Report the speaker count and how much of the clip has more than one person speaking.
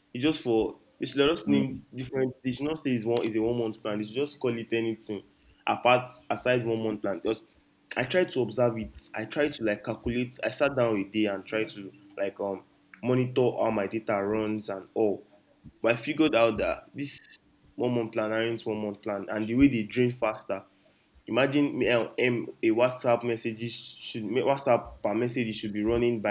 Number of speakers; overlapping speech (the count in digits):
1, no overlap